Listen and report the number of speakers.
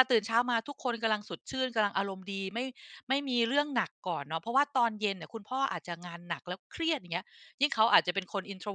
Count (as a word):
one